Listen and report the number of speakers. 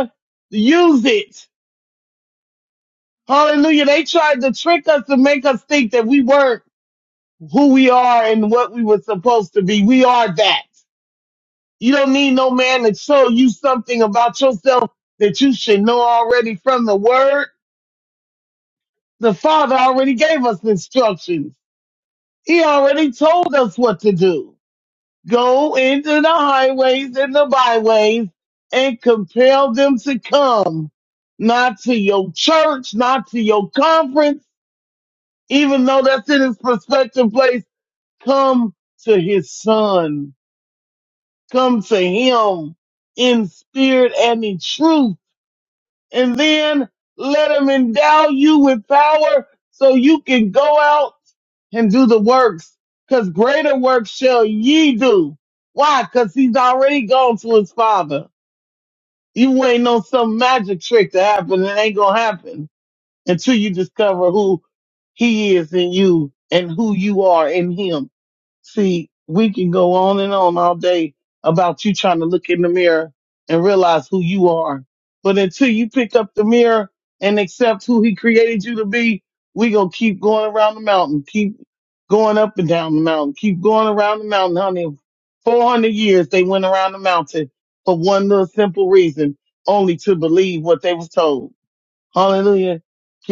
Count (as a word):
one